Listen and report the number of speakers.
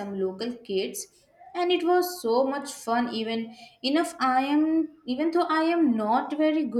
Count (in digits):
1